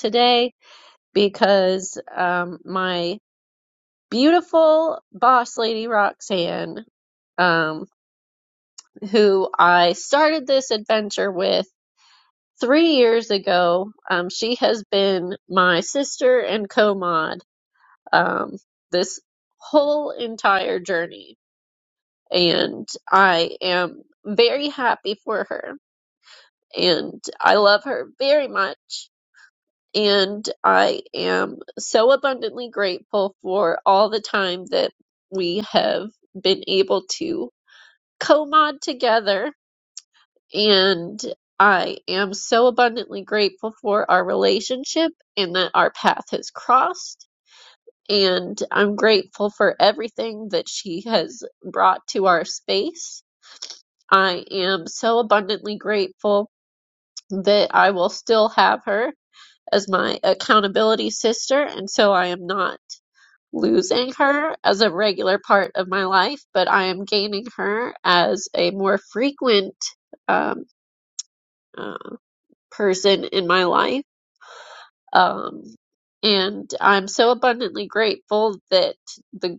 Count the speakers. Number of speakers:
1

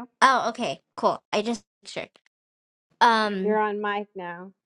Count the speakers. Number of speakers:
2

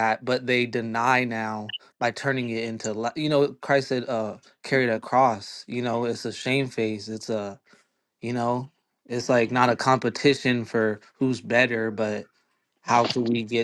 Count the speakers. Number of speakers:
1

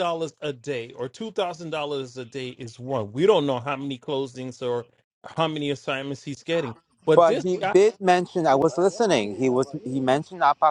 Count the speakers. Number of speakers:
2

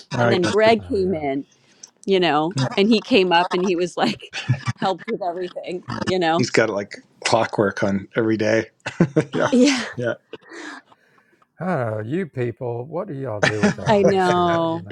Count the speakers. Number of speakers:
3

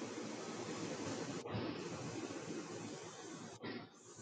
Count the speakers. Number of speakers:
0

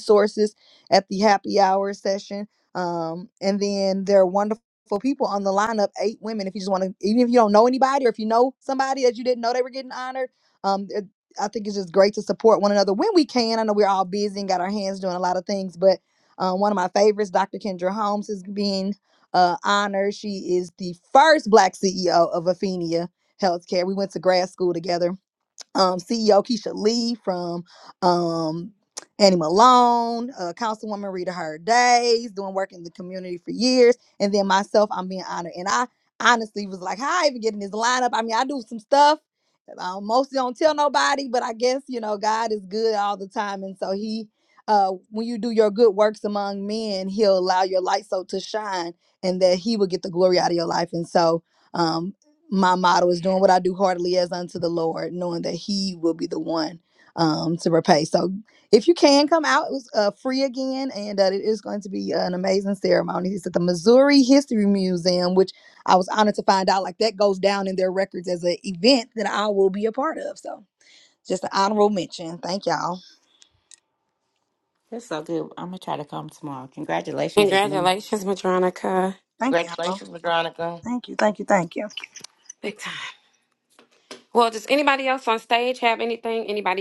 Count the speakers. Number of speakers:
4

